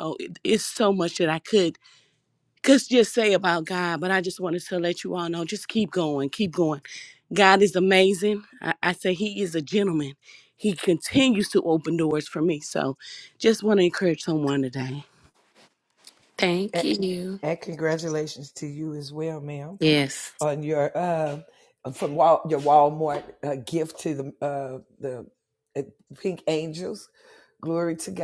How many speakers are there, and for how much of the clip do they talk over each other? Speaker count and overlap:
three, about 1%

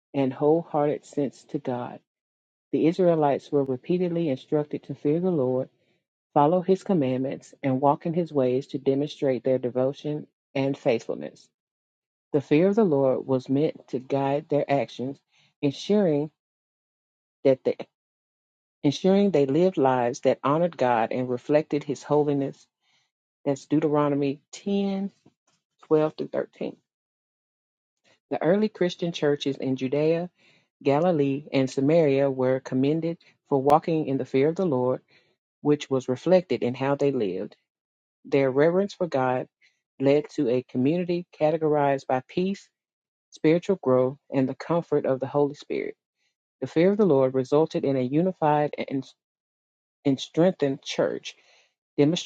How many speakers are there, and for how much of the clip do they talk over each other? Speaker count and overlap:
one, no overlap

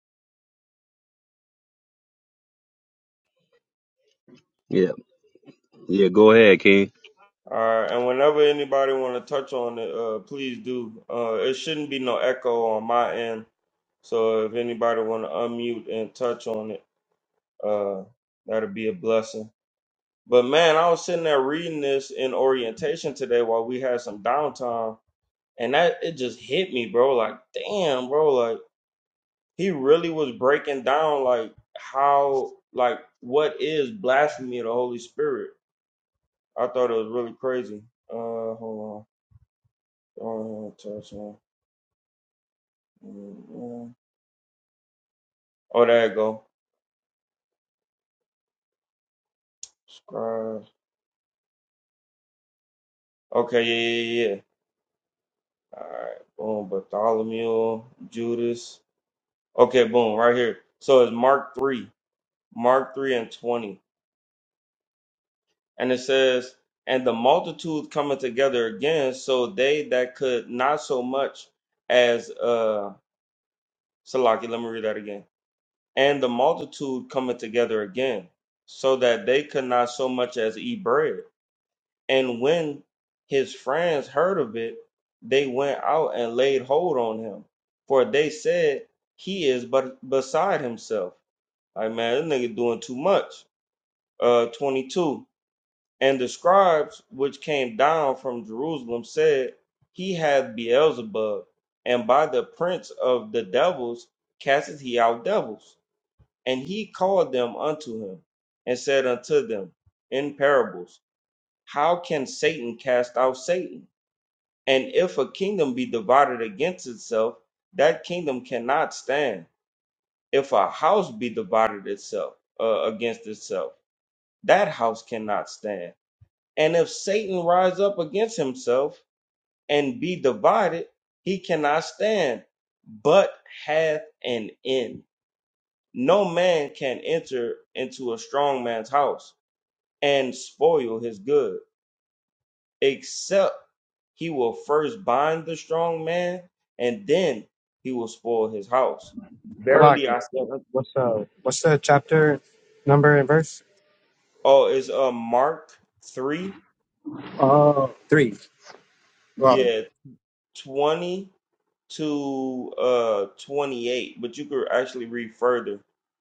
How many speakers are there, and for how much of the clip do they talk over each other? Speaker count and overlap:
three, about 1%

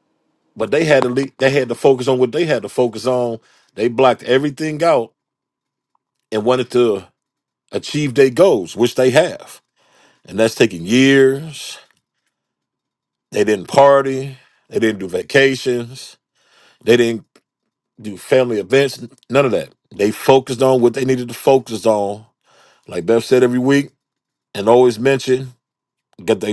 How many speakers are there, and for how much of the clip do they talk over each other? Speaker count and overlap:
one, no overlap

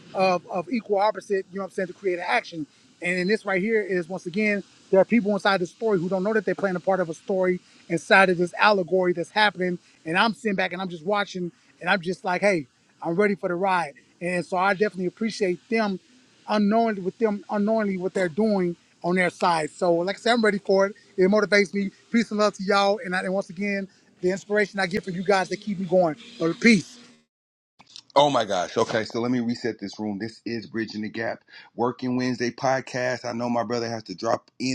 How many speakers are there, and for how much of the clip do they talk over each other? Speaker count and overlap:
two, no overlap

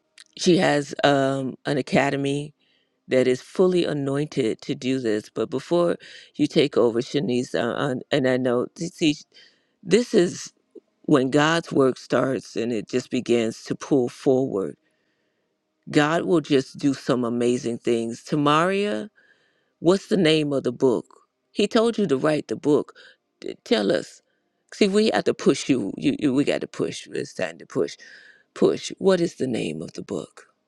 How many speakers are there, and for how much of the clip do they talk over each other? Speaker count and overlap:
one, no overlap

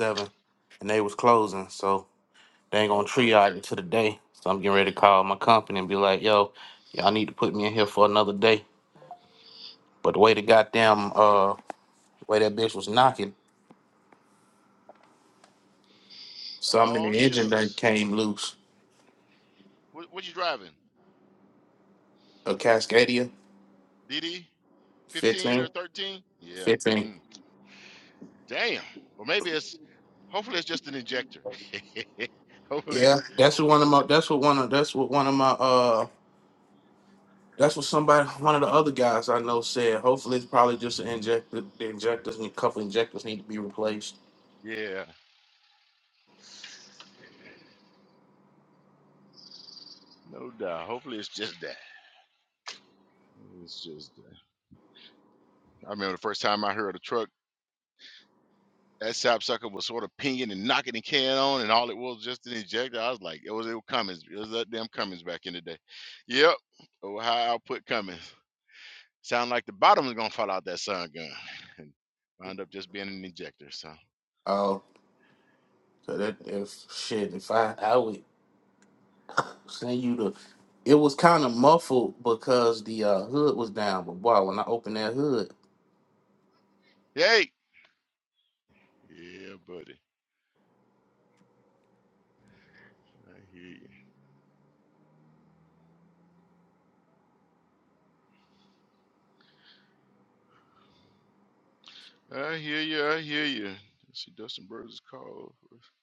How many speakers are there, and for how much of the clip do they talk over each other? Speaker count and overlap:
two, about 3%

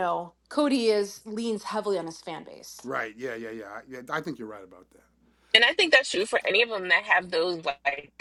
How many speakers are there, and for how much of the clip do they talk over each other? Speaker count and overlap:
three, no overlap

